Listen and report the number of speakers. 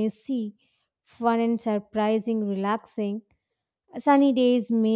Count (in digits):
1